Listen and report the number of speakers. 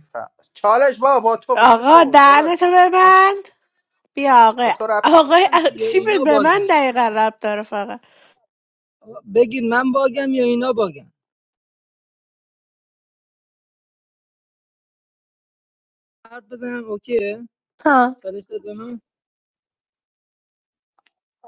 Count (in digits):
3